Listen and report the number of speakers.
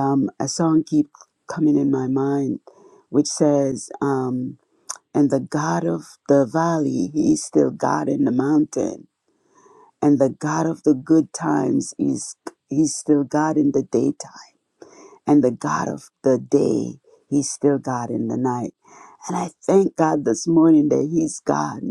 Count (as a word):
one